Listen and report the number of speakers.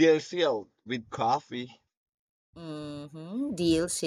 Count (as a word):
two